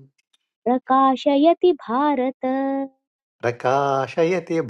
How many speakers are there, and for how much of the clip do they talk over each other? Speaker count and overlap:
2, no overlap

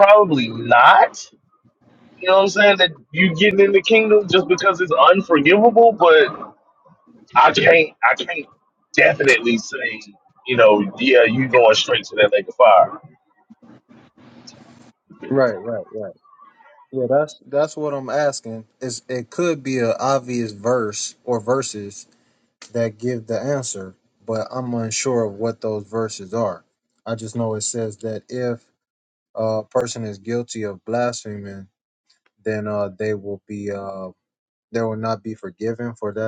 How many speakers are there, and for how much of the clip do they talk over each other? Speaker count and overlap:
2, no overlap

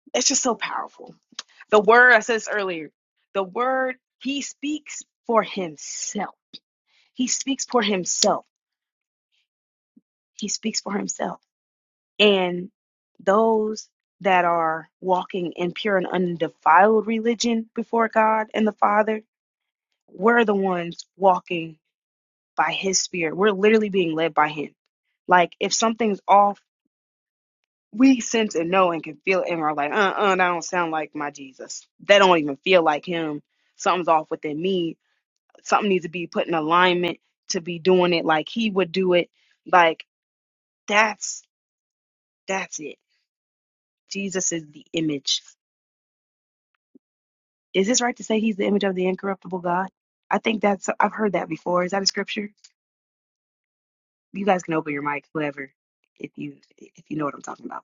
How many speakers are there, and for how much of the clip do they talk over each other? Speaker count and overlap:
1, no overlap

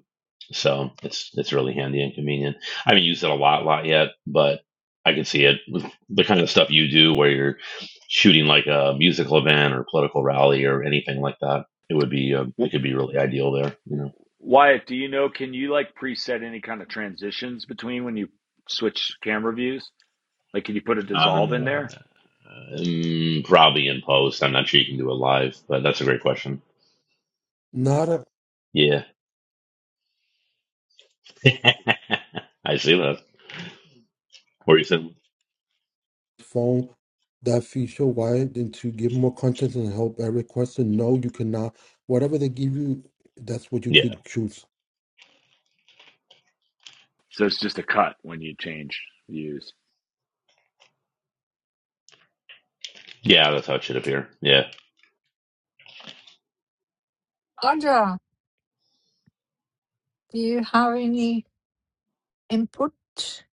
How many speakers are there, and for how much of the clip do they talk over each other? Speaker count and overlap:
4, about 1%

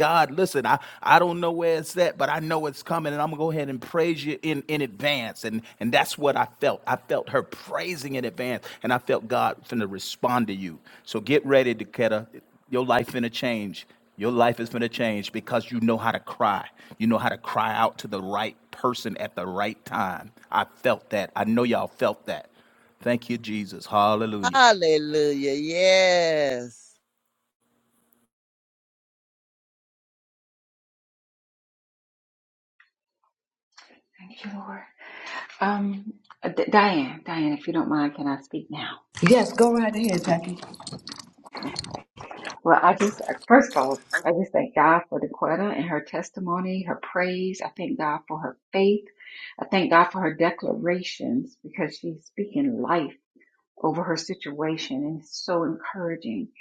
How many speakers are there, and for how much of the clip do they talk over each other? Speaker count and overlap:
4, under 1%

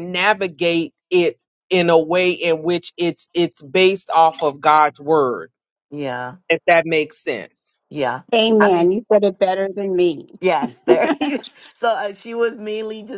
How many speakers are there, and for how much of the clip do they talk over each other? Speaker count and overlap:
3, about 2%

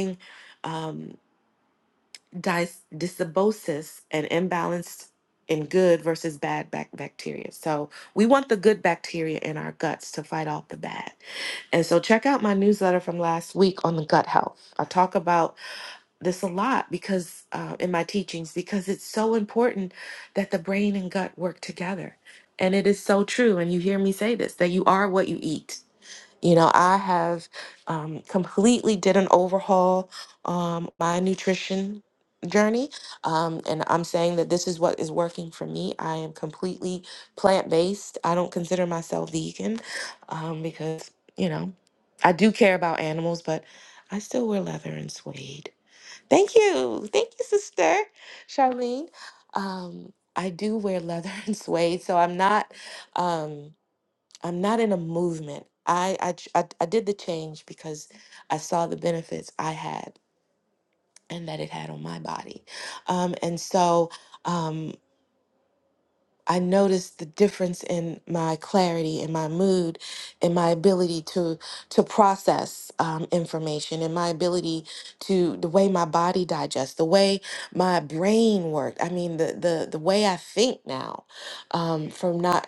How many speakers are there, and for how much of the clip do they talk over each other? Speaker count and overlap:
1, no overlap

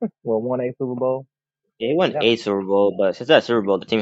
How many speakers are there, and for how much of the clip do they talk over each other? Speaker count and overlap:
2, about 4%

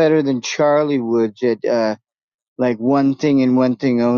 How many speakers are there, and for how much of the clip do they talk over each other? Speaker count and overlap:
1, no overlap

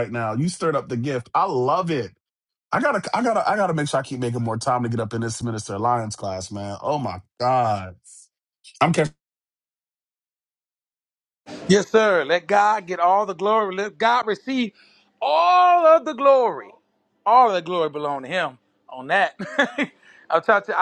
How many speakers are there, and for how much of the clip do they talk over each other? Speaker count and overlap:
2, no overlap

